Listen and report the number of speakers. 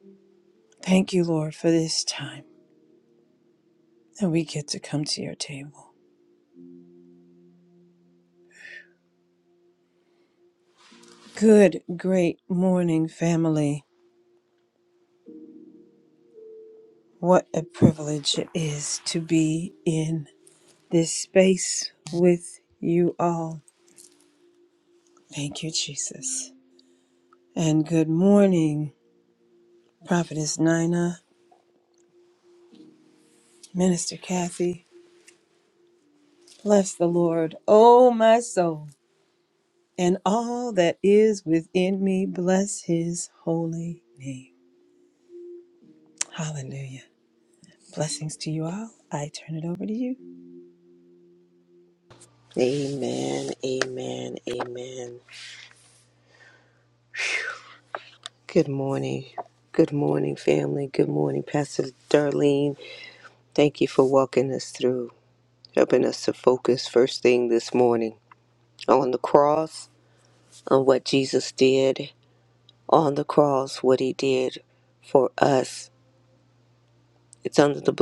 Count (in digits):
2